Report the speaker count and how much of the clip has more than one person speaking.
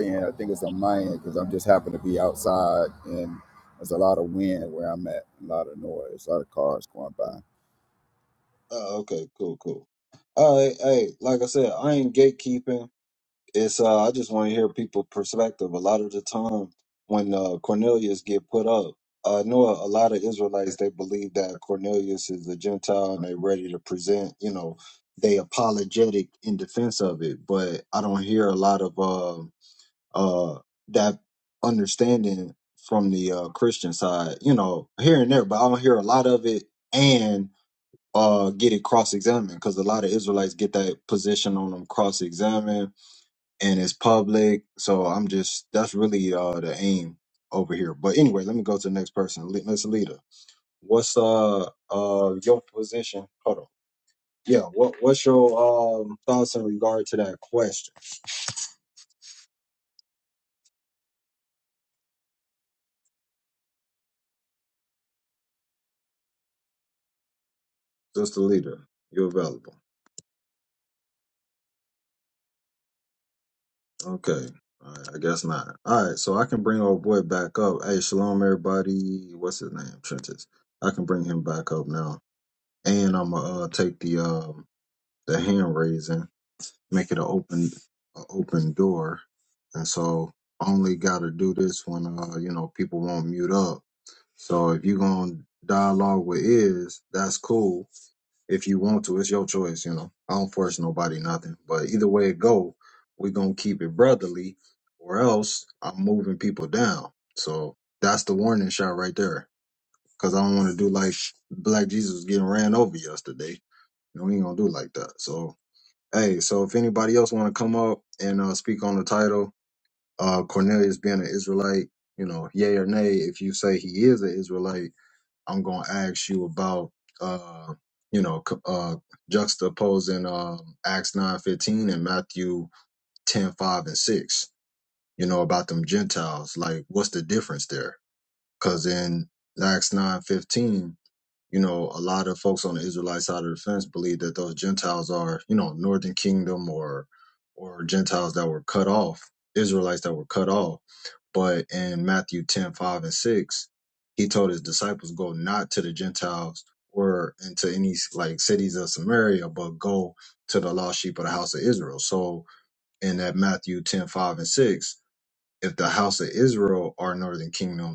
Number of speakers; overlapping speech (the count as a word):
two, under 1%